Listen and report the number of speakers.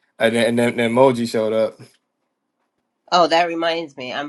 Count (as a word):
two